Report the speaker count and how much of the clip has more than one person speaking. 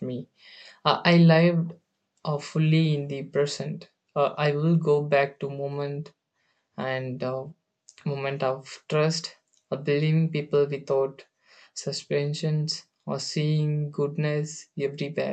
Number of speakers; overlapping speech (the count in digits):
1, no overlap